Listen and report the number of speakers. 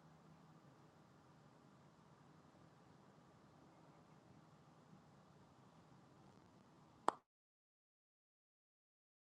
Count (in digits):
0